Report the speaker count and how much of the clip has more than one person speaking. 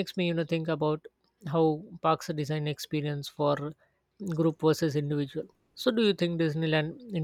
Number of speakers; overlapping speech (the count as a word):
one, no overlap